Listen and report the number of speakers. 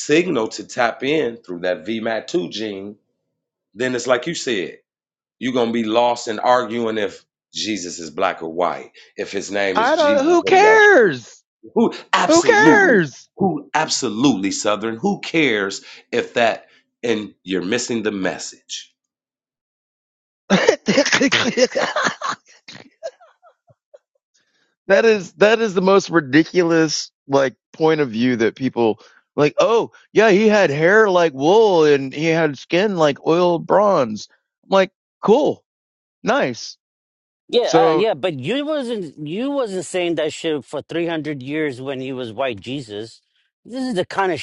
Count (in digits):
3